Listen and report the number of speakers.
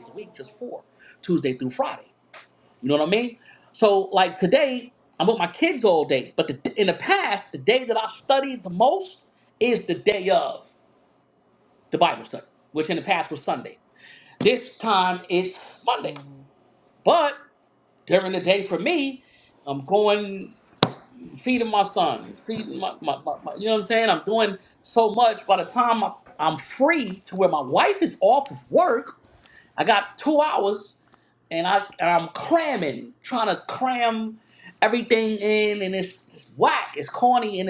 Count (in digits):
1